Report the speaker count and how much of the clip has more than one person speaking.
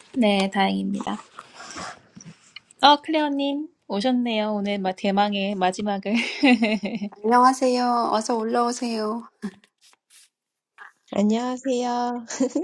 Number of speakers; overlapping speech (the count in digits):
3, no overlap